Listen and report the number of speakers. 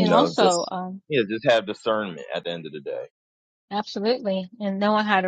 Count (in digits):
2